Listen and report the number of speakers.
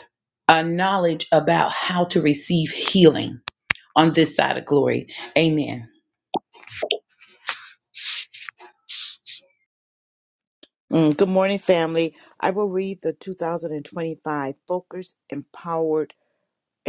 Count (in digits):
2